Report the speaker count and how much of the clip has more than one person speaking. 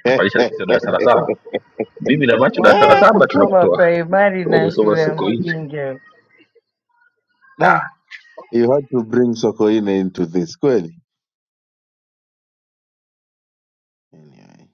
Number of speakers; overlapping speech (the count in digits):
3, about 17%